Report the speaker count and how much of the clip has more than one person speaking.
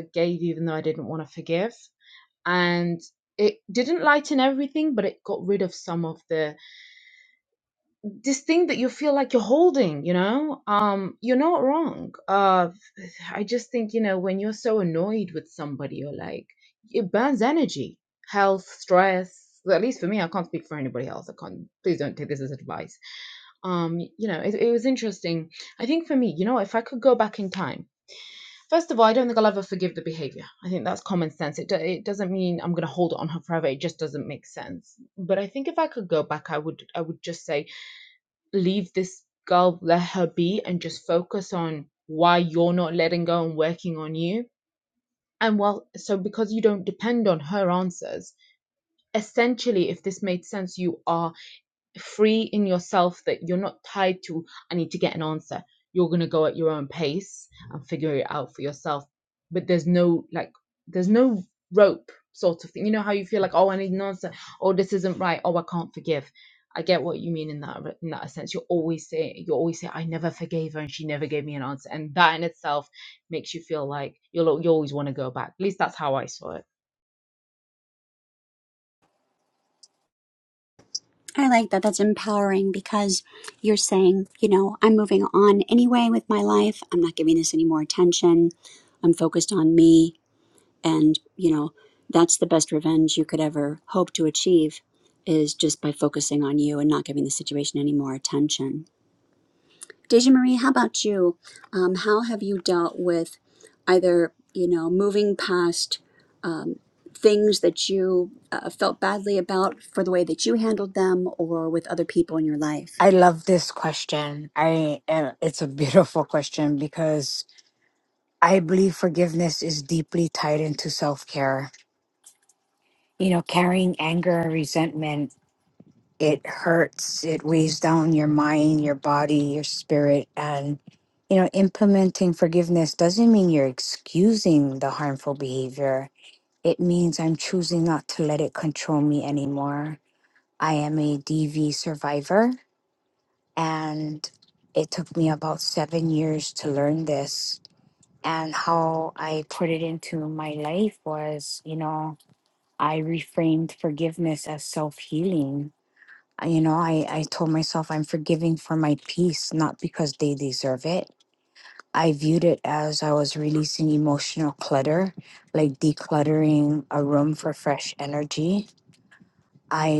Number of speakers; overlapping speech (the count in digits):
3, no overlap